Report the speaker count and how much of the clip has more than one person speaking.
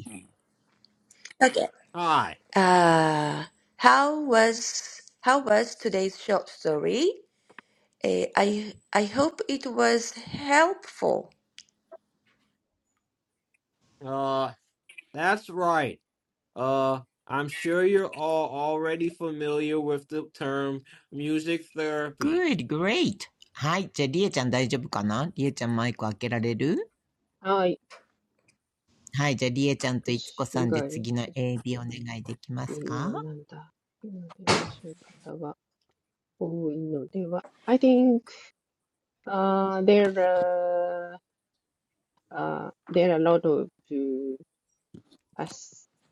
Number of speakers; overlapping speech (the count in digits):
4, about 3%